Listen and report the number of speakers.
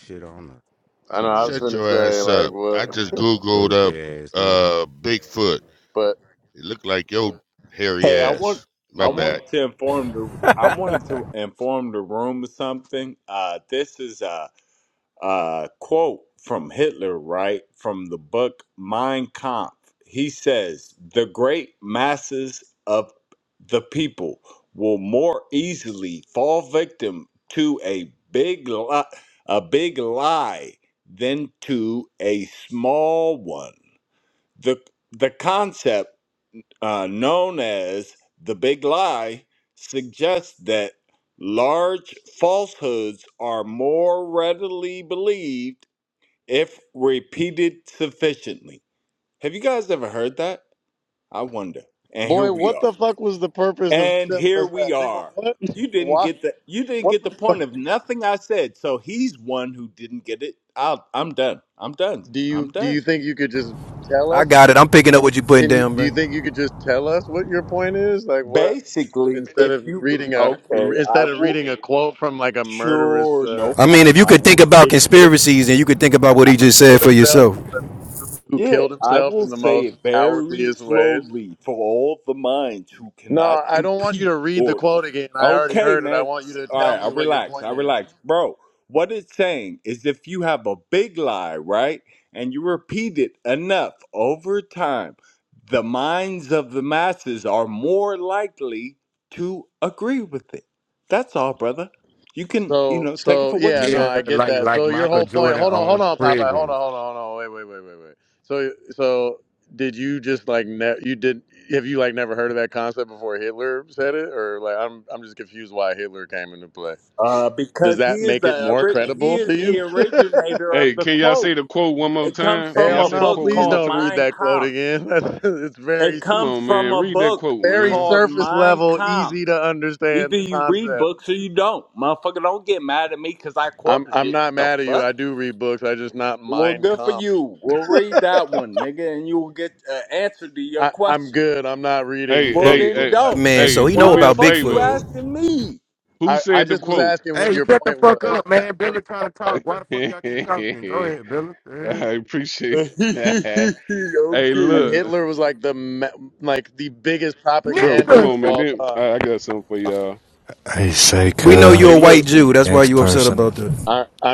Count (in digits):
7